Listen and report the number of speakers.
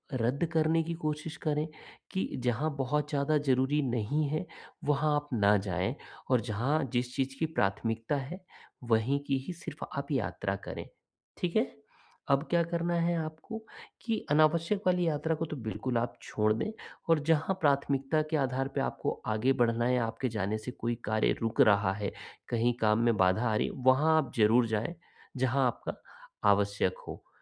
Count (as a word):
one